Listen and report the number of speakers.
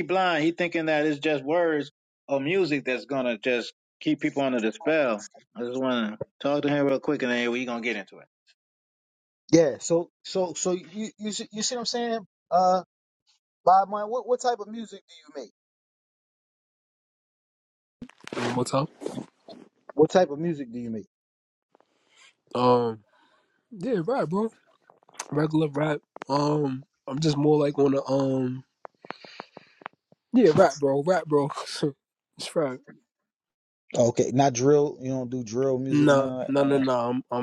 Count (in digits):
3